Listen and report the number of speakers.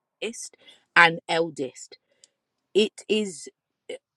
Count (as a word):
one